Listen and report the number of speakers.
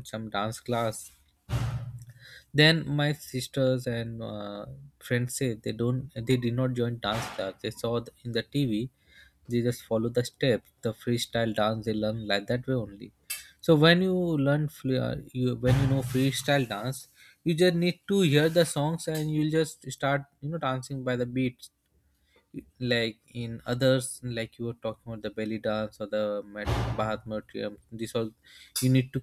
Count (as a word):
one